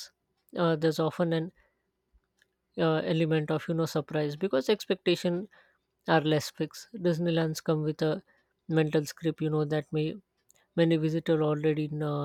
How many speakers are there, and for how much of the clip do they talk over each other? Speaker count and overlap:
1, no overlap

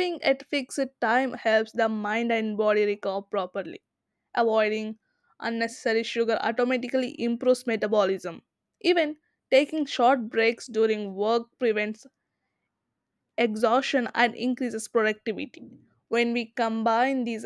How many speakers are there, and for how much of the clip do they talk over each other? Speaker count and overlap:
1, no overlap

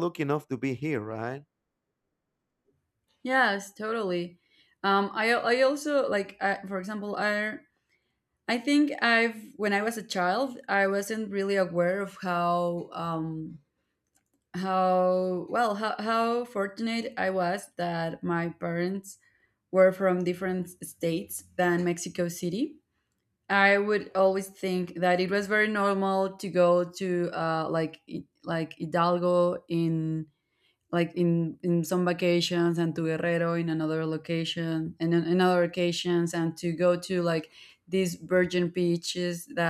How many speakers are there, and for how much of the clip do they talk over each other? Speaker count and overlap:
2, no overlap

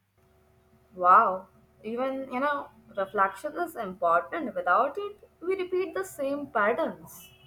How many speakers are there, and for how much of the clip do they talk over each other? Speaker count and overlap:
1, no overlap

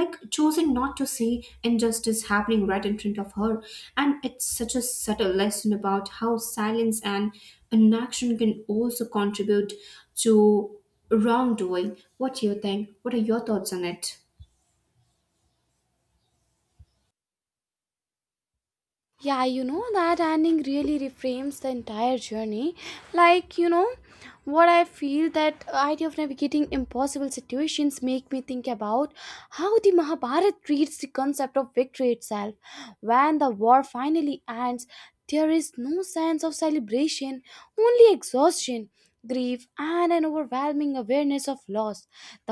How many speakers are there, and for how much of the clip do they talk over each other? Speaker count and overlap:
2, no overlap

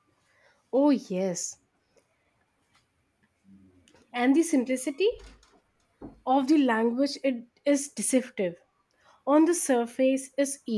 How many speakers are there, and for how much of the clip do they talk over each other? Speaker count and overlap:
1, no overlap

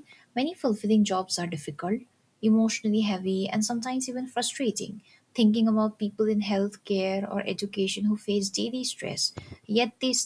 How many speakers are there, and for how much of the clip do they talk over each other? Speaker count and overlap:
1, no overlap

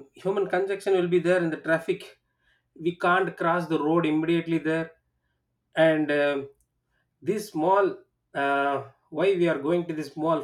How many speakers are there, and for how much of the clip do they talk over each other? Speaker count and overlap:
1, no overlap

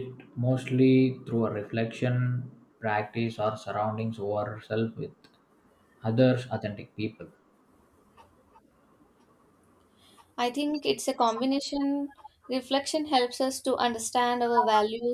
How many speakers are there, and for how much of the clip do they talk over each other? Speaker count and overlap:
2, no overlap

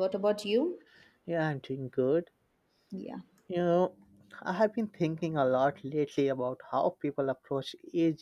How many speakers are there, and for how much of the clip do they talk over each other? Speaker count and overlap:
2, no overlap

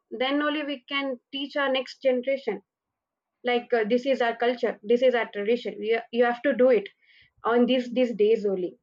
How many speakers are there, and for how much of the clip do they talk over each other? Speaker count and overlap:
1, no overlap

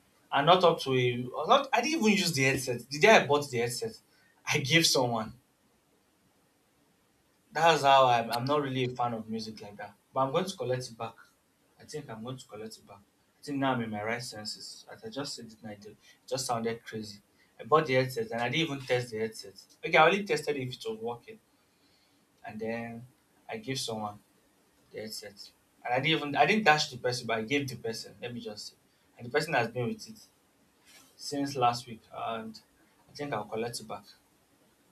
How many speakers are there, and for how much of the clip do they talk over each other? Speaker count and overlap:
1, no overlap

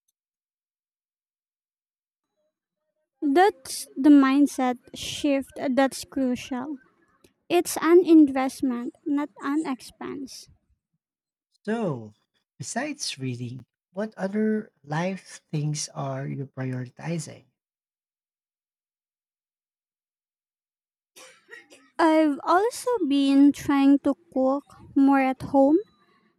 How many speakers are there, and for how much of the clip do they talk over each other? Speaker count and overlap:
2, no overlap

